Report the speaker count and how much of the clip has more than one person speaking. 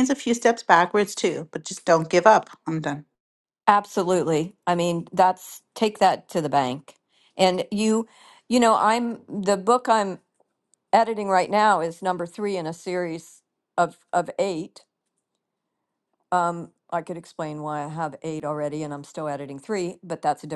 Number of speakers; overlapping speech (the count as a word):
two, no overlap